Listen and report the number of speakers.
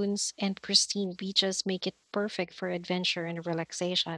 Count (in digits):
1